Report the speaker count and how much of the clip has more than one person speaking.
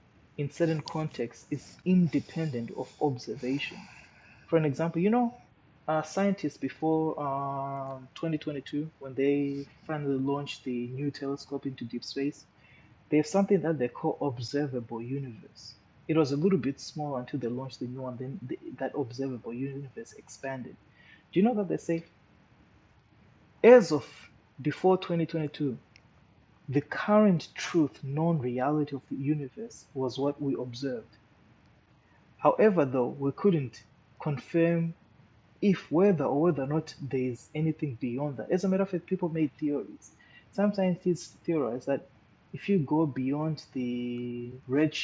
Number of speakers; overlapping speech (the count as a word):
one, no overlap